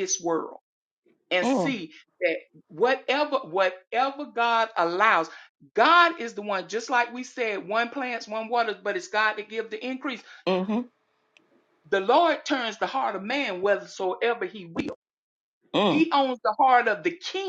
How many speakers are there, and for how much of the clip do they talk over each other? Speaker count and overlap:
two, about 3%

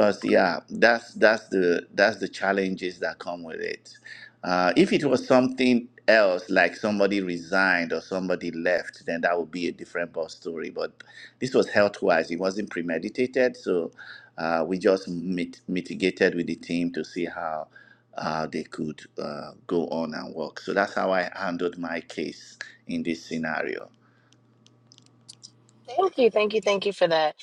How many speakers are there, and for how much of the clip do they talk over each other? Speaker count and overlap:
two, no overlap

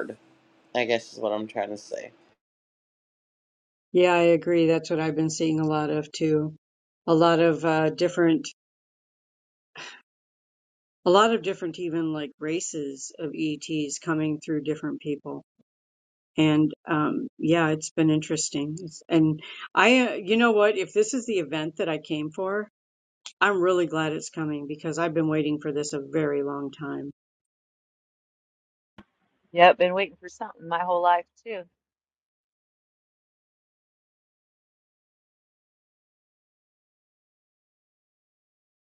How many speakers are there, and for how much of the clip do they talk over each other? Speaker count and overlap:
three, no overlap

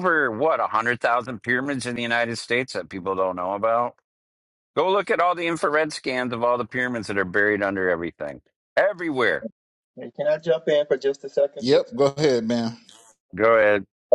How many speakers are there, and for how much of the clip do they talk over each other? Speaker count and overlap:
three, about 1%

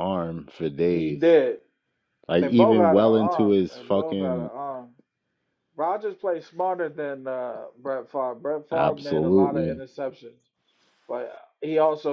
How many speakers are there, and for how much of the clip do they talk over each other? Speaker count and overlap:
two, about 29%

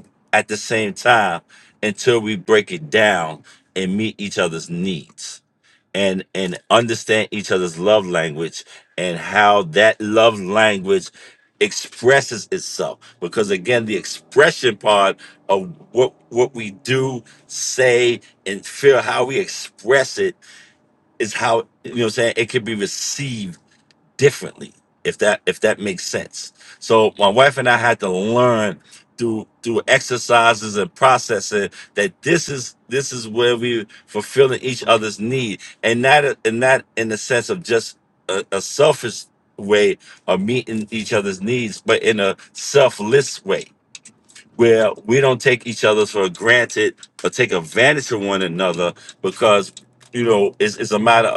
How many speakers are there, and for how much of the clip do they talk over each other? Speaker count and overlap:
one, no overlap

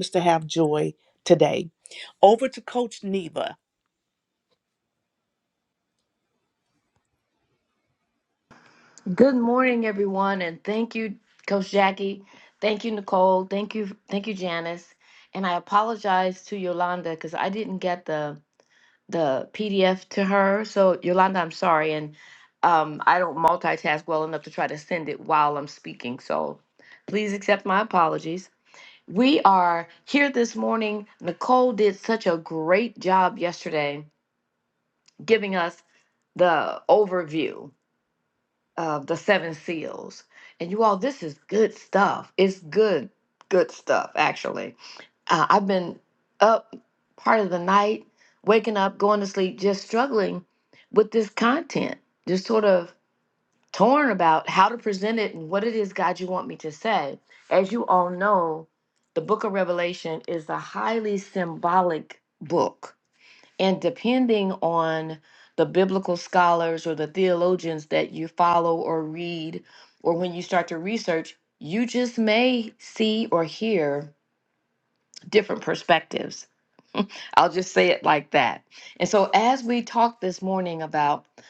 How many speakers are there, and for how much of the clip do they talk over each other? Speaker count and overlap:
two, no overlap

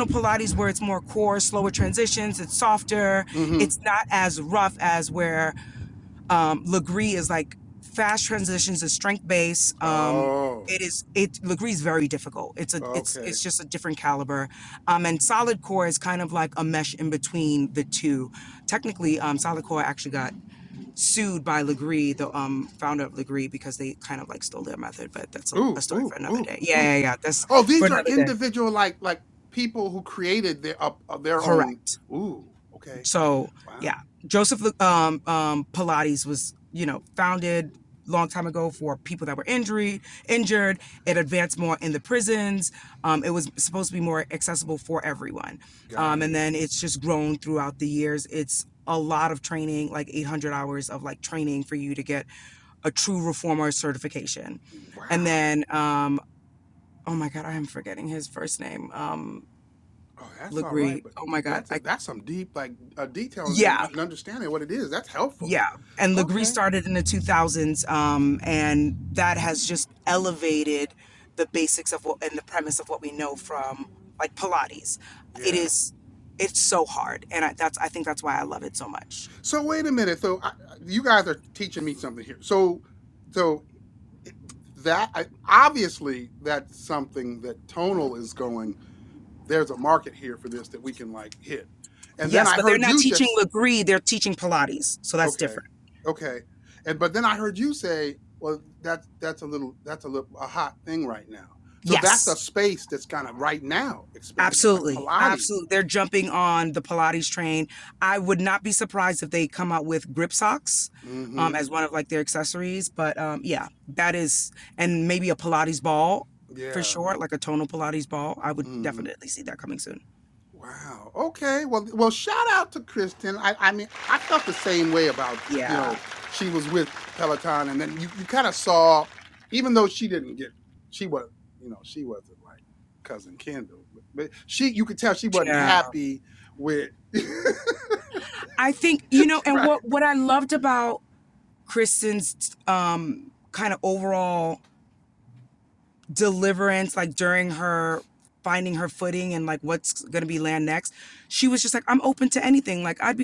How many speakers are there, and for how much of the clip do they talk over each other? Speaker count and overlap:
two, about 8%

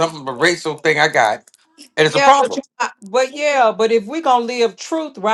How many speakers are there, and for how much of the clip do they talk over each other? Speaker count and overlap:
two, about 9%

